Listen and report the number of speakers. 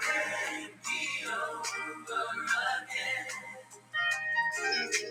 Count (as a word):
zero